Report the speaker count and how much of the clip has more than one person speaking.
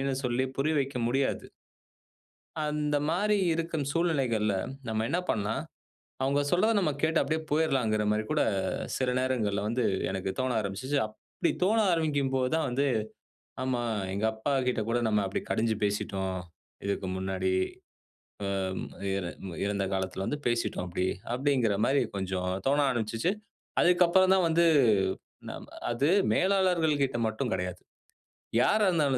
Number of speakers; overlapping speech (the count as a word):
one, no overlap